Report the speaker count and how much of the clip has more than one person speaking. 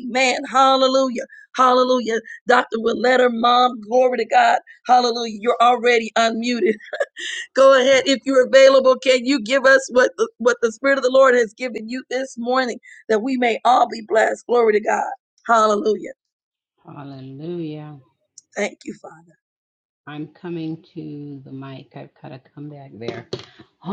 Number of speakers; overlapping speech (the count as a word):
two, no overlap